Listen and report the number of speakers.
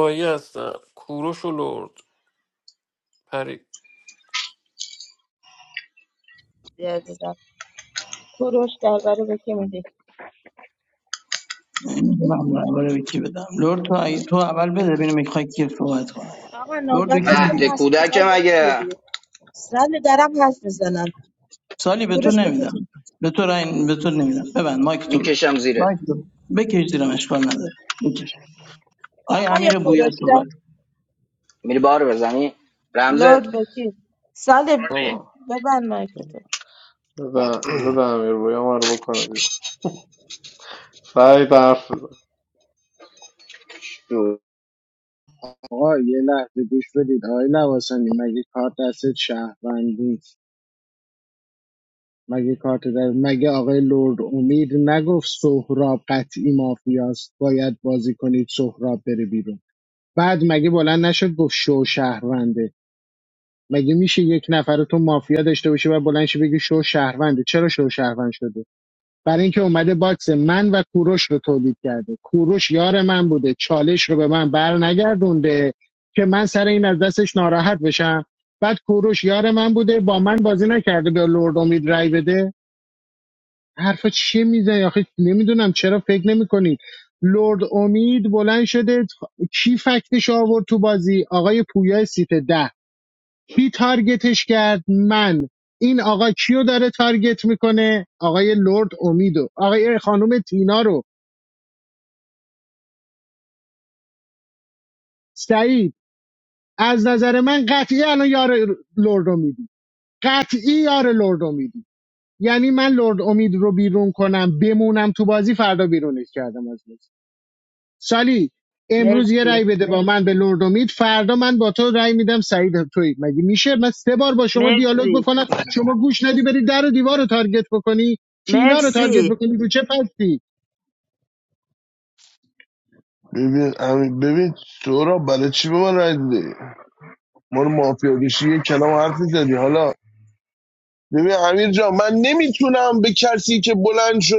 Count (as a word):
seven